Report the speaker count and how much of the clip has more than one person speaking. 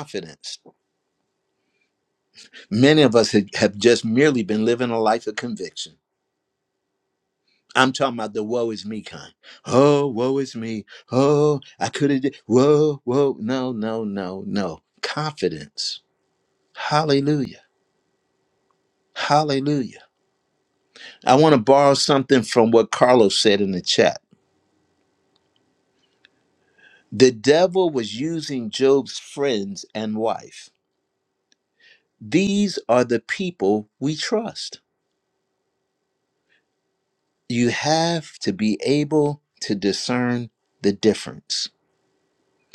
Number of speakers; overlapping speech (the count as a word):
one, no overlap